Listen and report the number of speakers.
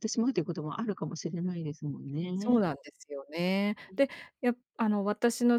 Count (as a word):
two